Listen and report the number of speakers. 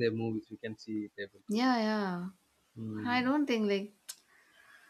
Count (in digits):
2